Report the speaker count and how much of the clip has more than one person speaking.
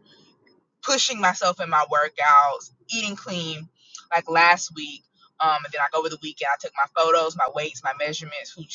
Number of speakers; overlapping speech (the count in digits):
1, no overlap